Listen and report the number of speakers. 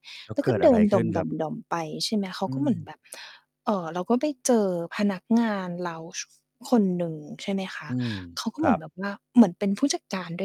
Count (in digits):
2